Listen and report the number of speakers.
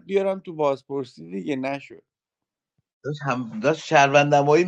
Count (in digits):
2